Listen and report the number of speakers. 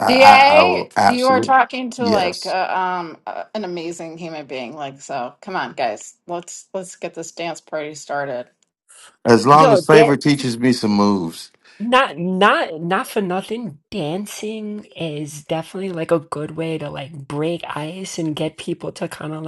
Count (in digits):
3